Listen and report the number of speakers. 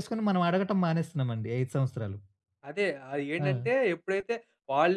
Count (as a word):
two